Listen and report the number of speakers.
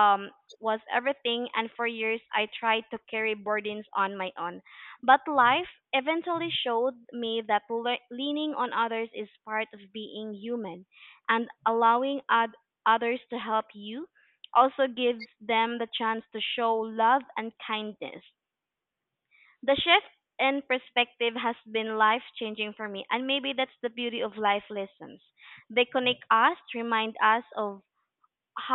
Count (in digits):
1